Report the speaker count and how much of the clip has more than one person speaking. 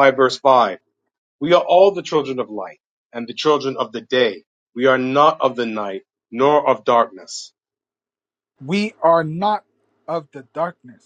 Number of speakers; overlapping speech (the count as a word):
two, no overlap